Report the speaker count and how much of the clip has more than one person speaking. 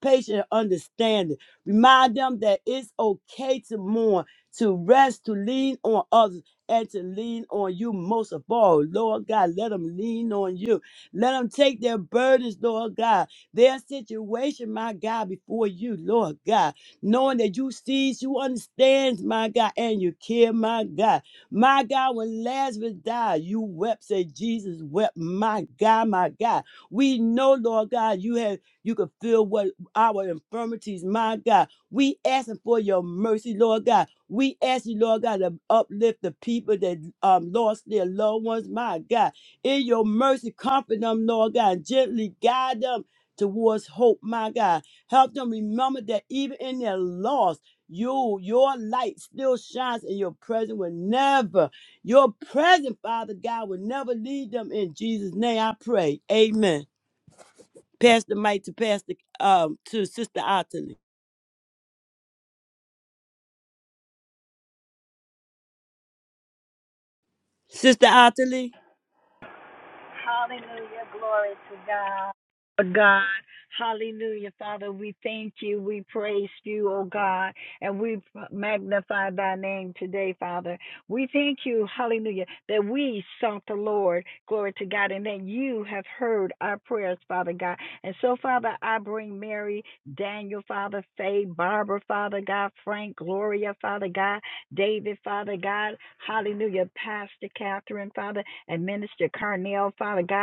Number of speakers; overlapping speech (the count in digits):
2, no overlap